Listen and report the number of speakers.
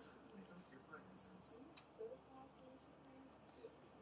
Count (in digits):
0